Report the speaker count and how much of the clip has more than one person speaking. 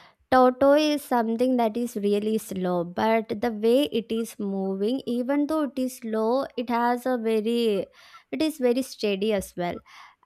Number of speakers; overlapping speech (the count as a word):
one, no overlap